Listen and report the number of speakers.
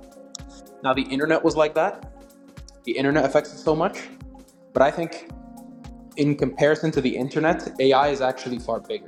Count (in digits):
1